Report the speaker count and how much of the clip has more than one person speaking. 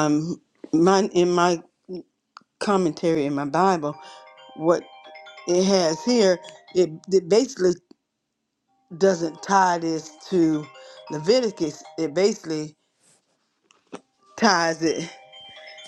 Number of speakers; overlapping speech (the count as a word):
one, no overlap